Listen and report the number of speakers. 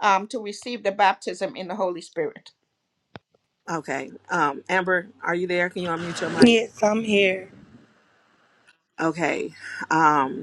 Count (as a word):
three